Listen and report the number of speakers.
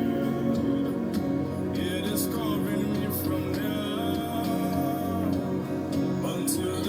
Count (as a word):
zero